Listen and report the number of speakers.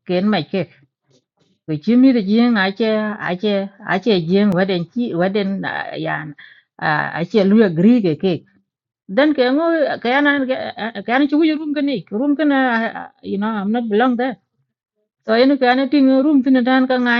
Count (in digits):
1